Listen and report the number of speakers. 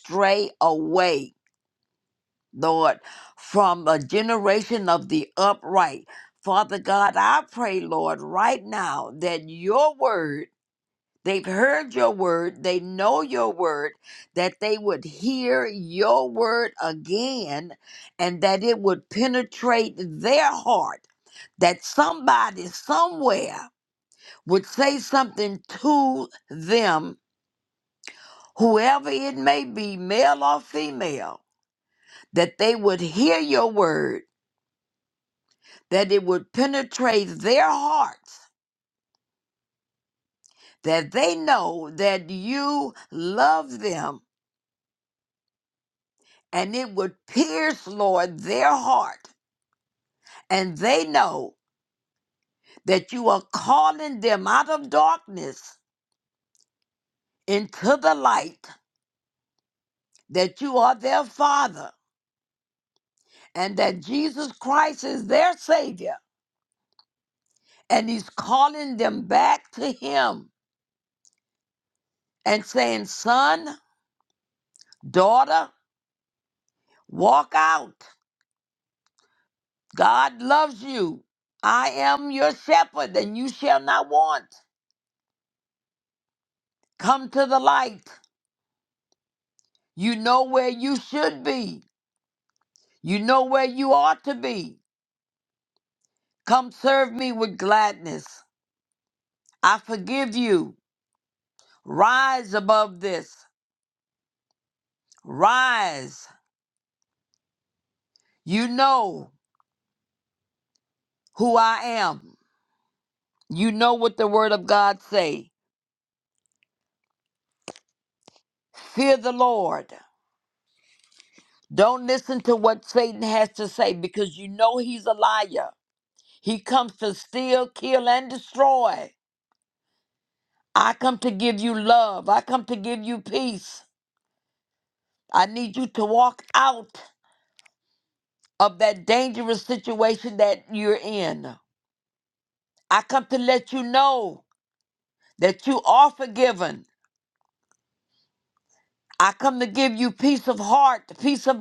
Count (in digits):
1